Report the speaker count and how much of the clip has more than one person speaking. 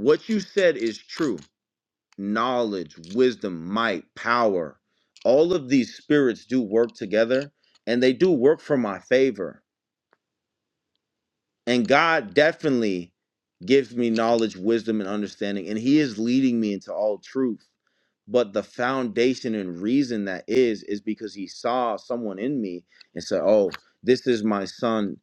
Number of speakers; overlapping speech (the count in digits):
1, no overlap